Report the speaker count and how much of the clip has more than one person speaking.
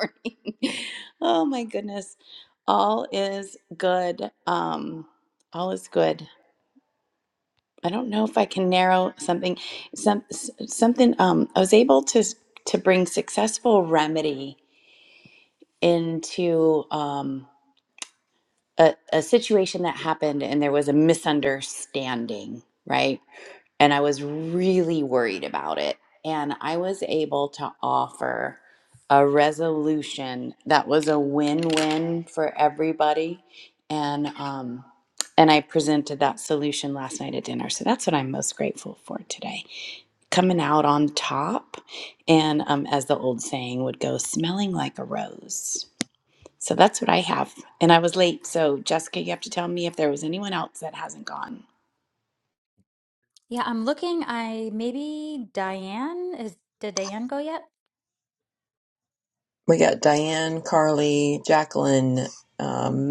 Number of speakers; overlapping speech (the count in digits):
3, no overlap